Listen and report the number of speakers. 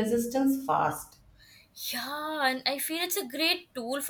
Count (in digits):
2